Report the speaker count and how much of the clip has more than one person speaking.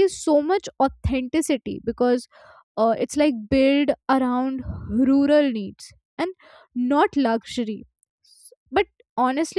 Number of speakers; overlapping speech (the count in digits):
1, no overlap